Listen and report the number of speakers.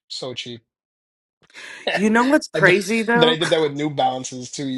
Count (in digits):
2